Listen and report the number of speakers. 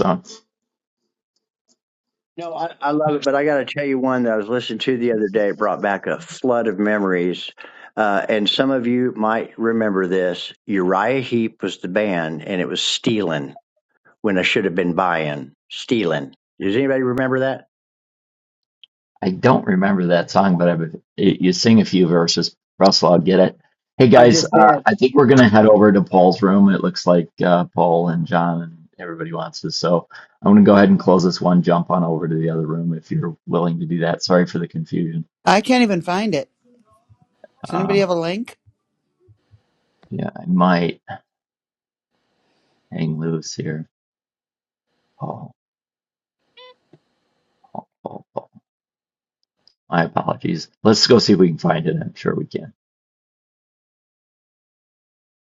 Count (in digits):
3